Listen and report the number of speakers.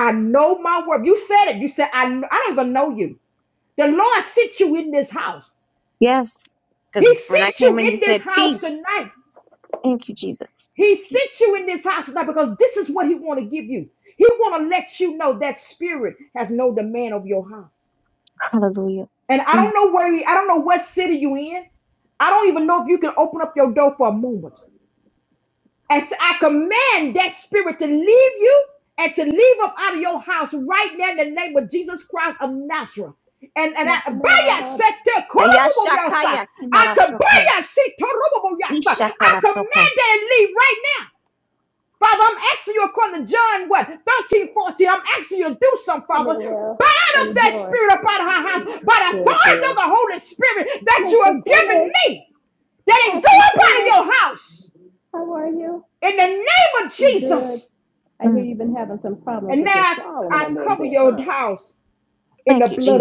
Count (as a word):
three